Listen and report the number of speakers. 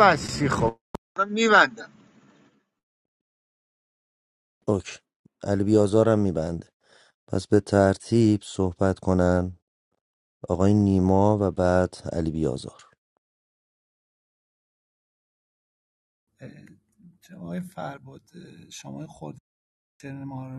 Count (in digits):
3